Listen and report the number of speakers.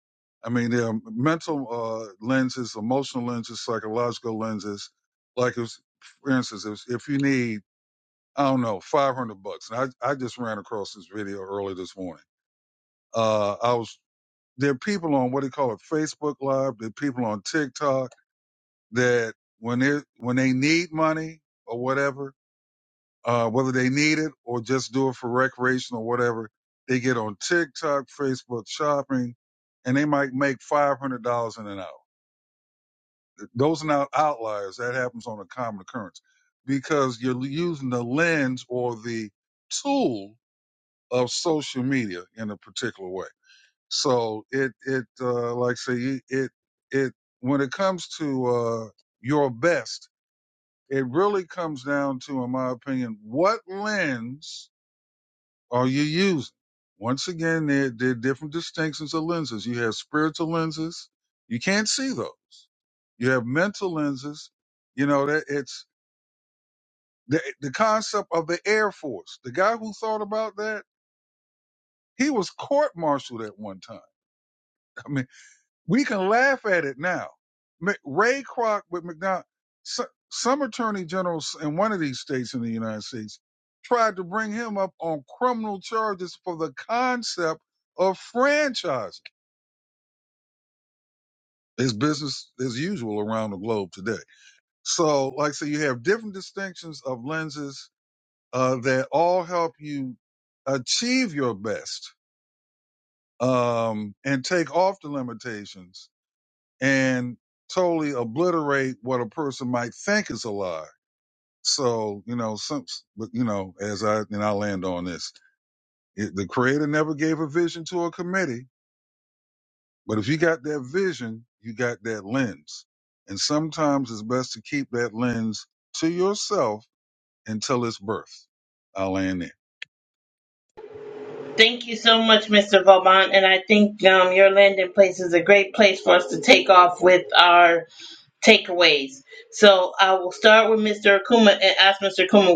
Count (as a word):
two